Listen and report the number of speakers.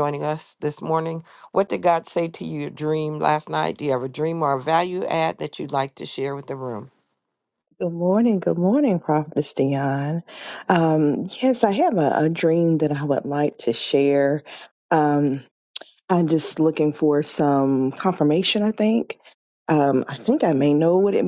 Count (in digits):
2